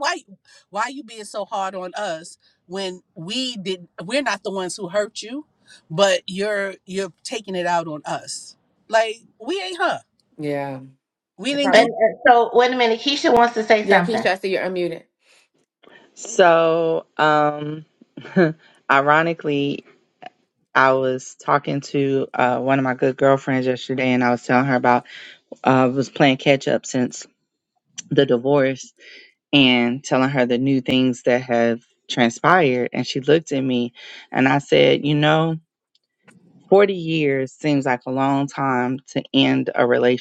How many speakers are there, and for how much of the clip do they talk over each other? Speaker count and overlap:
4, about 2%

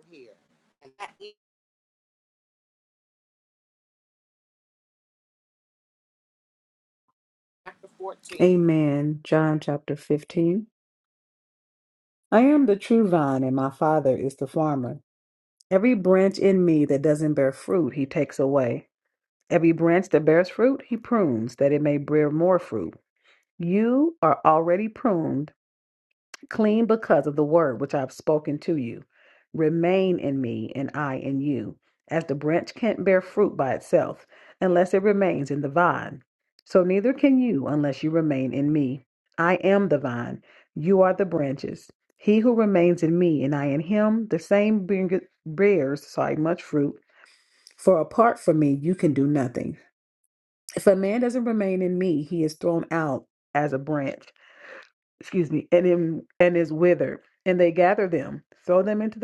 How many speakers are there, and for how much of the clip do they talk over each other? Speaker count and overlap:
2, under 1%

